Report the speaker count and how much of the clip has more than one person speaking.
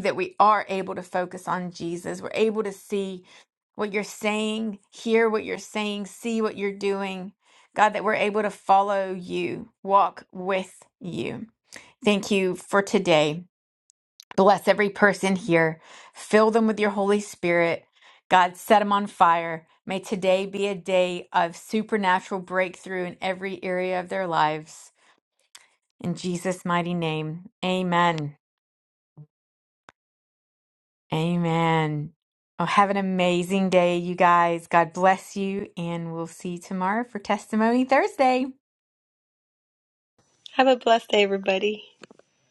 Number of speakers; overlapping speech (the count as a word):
two, no overlap